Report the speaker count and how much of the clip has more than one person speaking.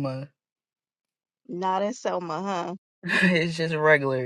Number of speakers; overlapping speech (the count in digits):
2, no overlap